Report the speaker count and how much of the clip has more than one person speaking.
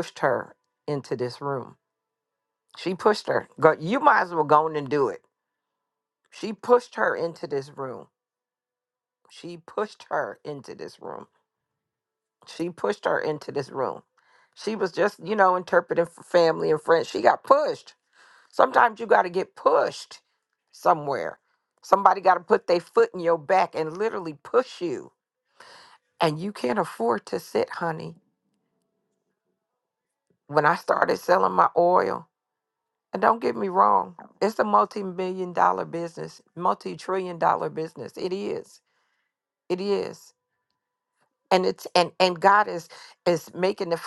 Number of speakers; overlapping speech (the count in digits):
1, no overlap